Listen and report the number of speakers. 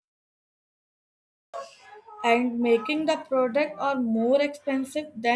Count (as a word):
one